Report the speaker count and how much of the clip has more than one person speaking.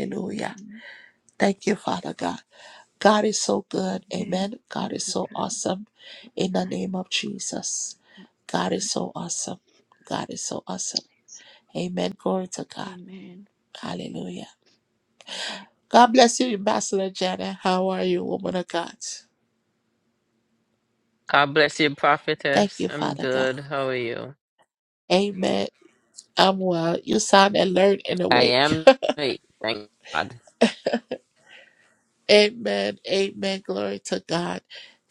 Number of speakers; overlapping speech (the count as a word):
three, about 12%